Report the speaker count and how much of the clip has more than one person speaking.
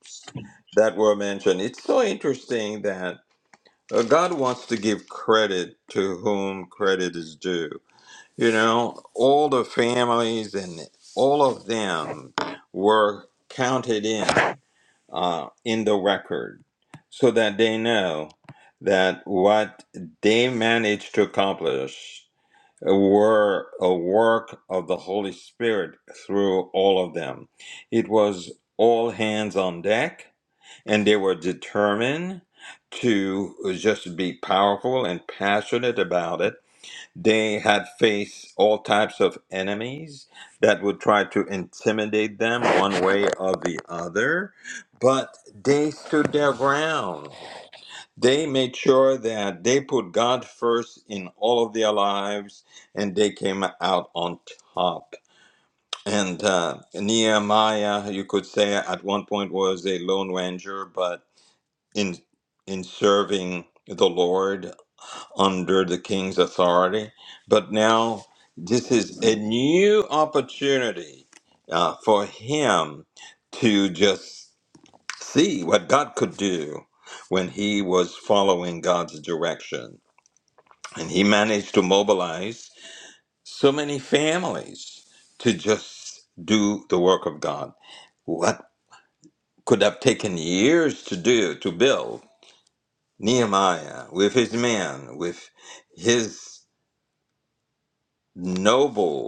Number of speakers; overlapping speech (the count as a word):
one, no overlap